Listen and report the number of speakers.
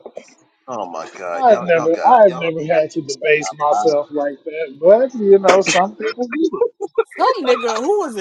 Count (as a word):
three